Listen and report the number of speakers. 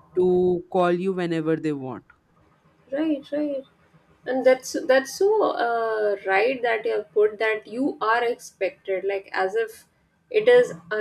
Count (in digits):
2